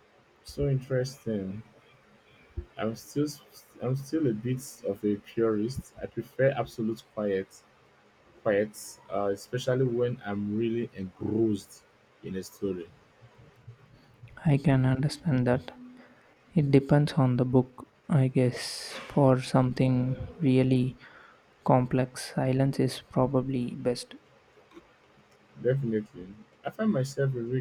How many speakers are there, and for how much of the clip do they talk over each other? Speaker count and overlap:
two, no overlap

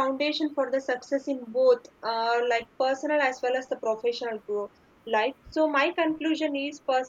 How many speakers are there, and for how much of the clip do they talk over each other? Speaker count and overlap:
one, no overlap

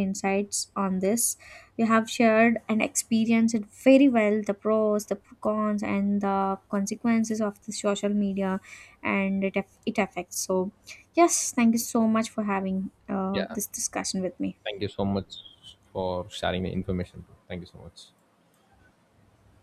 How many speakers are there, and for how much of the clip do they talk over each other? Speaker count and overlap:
two, about 1%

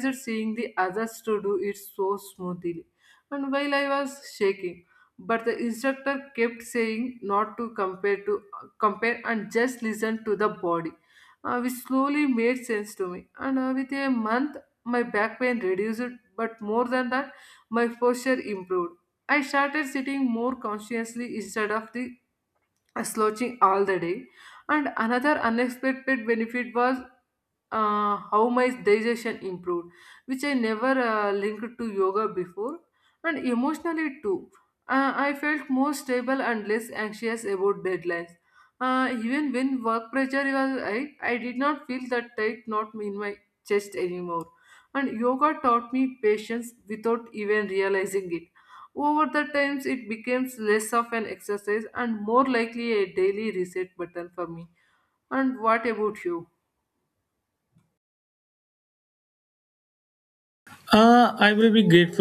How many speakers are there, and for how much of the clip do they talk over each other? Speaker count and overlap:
two, no overlap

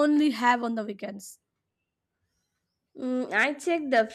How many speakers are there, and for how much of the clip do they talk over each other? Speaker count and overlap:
two, no overlap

